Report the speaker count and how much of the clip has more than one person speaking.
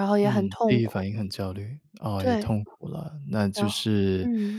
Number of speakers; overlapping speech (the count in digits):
2, about 30%